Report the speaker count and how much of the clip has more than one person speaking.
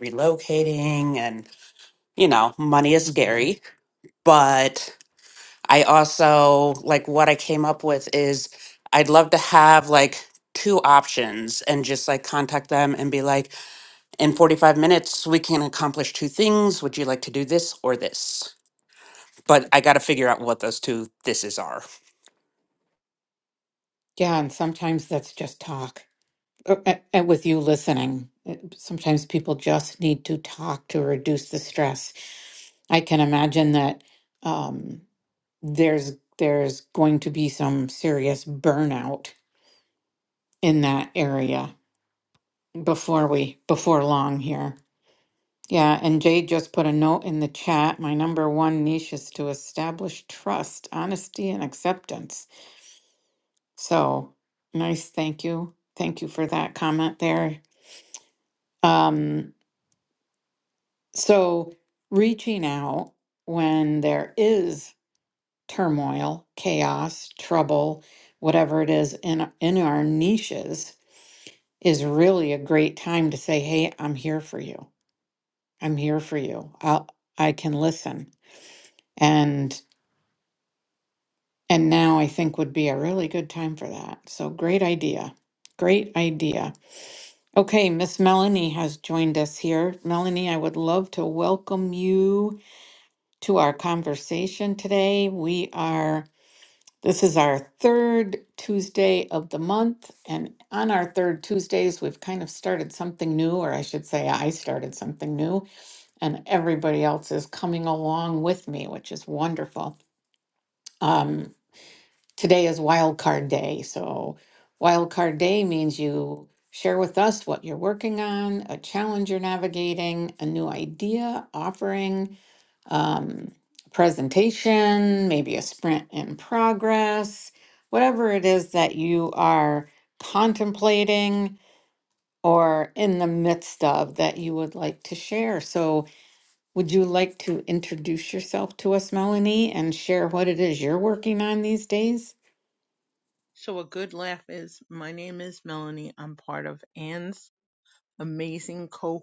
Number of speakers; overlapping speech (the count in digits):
3, under 1%